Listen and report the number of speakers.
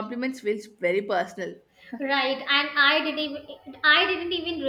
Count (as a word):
two